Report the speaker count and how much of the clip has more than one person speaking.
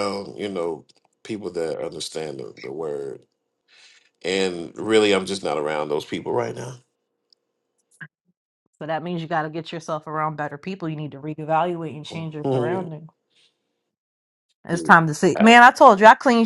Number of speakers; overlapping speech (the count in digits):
2, about 1%